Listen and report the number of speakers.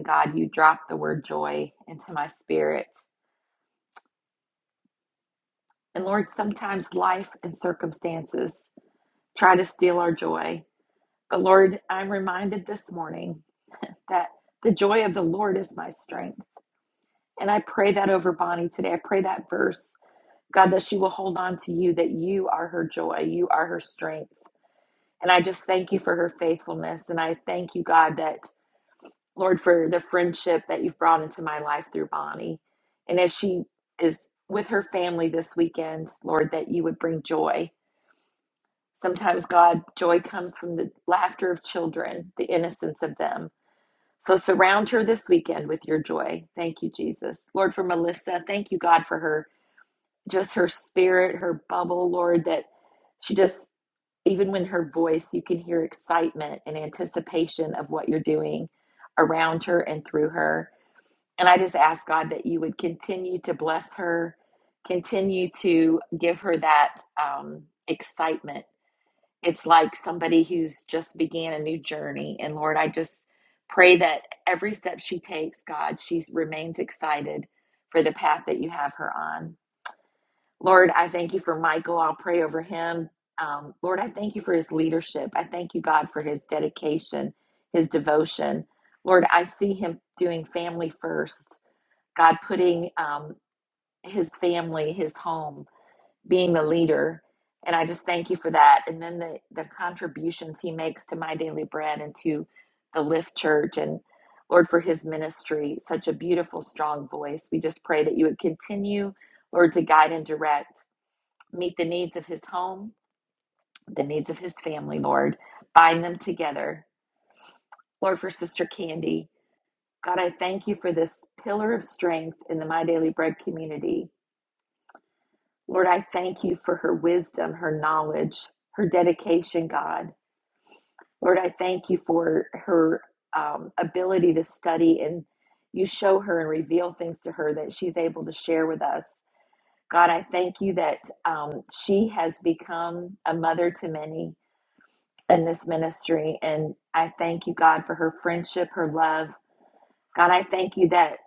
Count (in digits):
1